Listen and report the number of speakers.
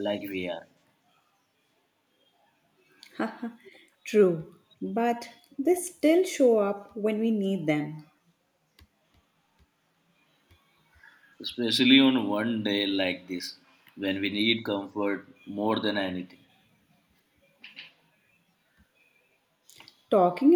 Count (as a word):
two